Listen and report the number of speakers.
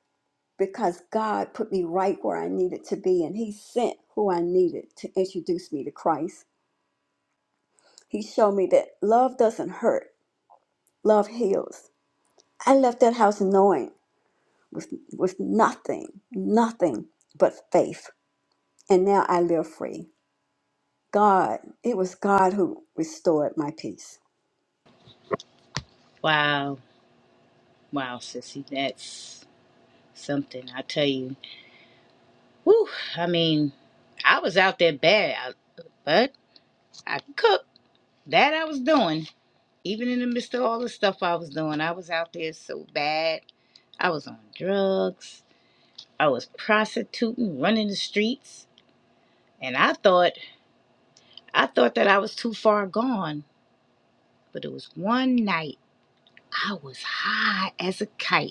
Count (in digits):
2